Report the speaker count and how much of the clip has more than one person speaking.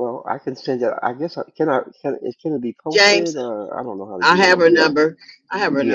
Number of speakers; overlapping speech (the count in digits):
2, about 23%